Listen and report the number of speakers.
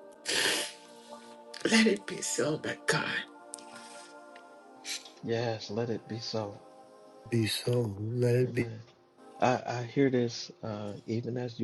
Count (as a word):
three